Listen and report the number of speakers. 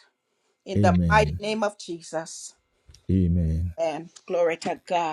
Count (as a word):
two